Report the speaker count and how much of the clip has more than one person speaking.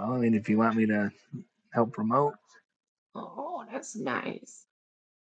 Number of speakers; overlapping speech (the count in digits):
2, no overlap